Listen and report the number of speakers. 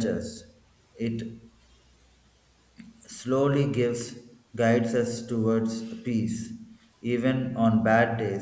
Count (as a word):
one